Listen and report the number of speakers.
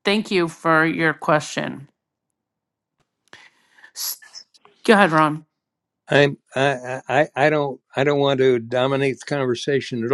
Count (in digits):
2